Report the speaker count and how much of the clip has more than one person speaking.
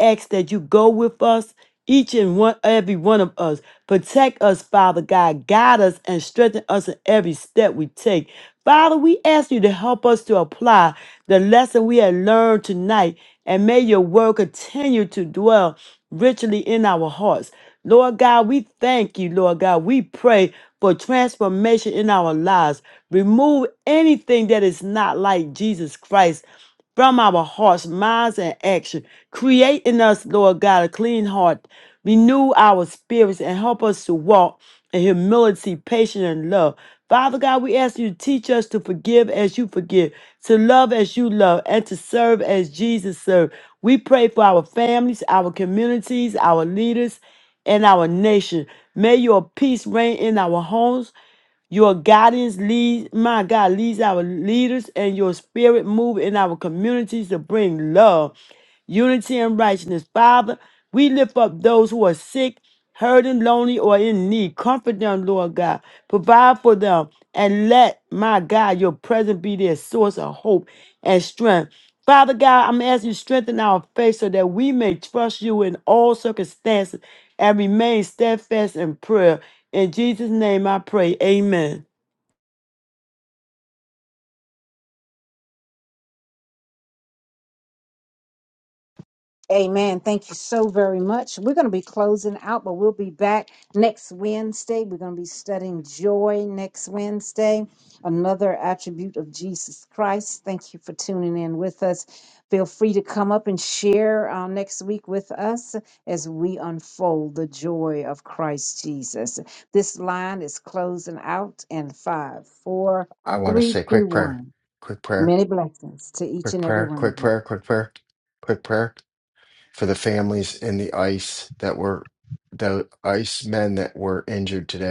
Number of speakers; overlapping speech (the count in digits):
3, about 2%